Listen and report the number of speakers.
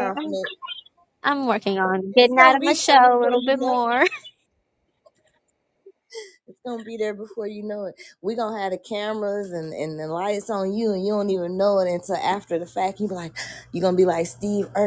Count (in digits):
2